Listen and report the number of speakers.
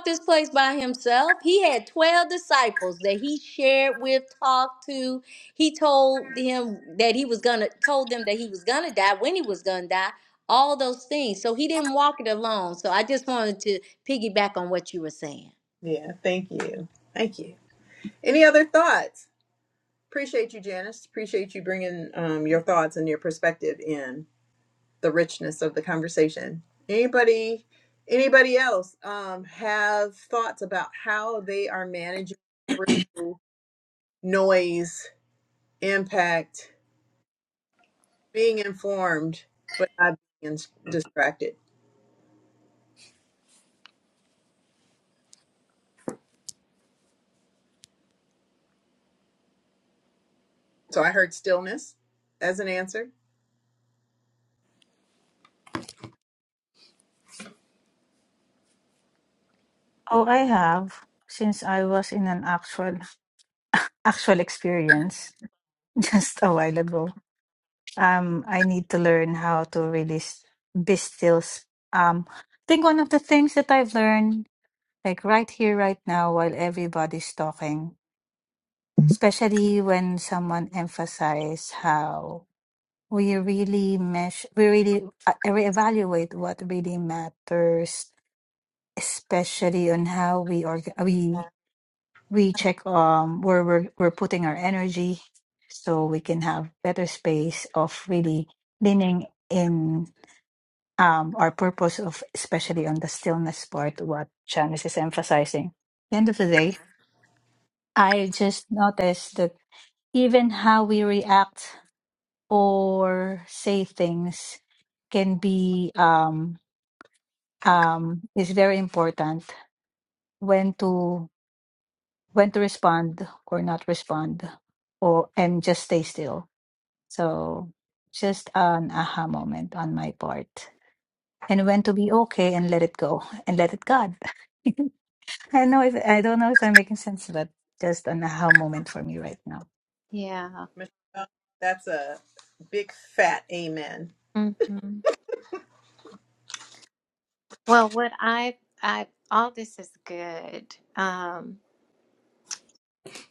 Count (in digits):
4